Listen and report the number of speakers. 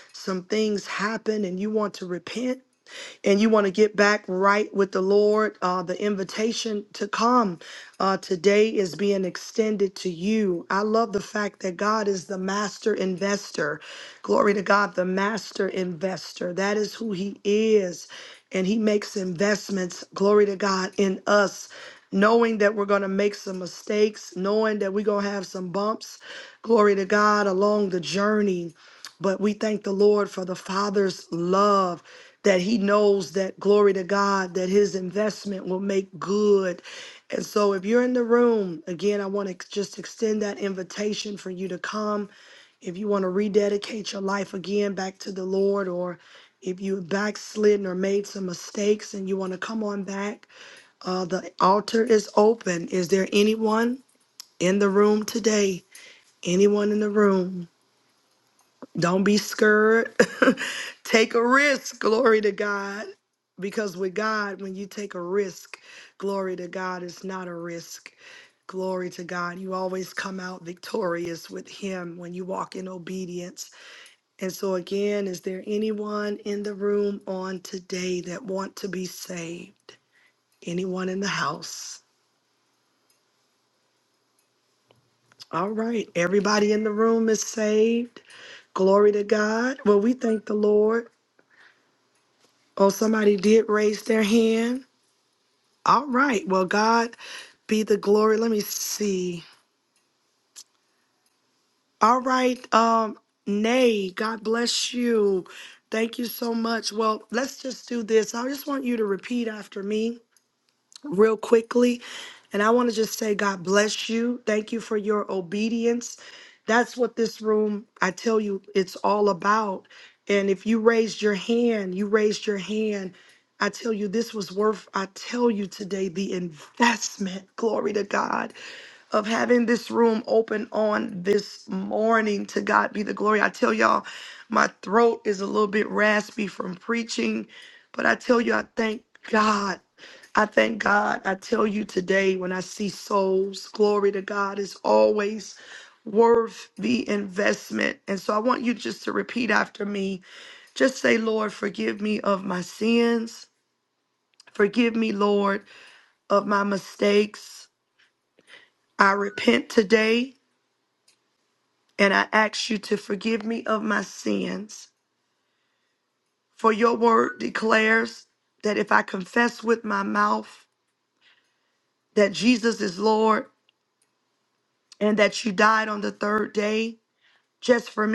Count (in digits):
1